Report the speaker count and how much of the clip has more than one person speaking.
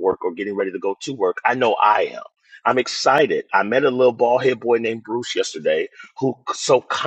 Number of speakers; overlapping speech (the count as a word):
one, no overlap